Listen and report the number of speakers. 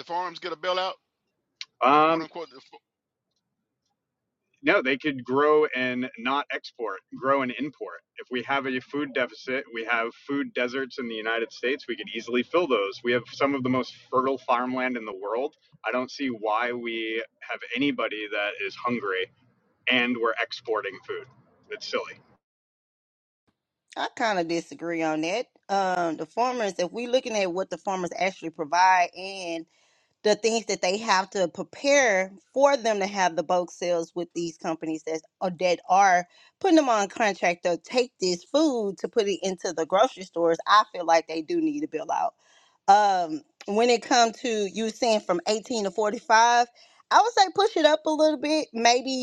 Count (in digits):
3